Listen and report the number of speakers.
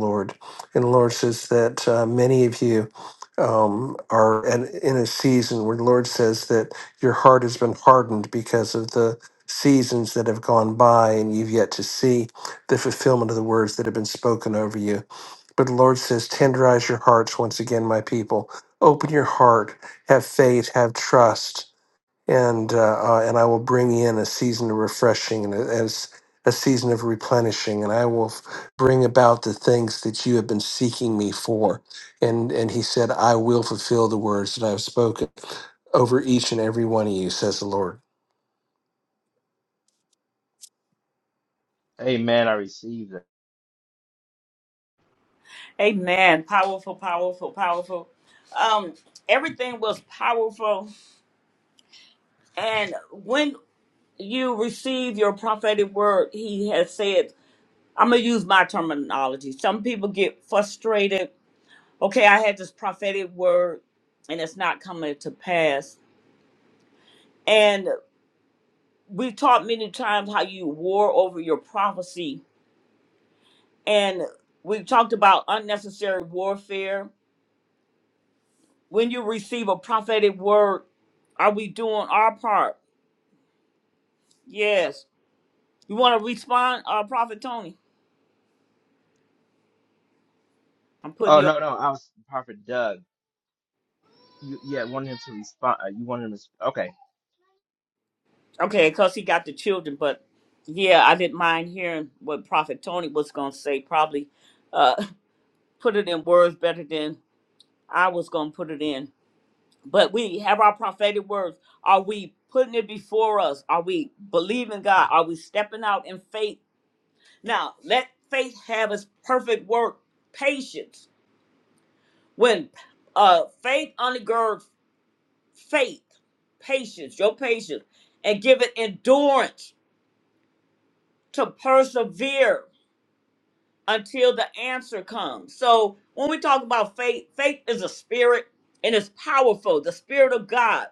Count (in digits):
3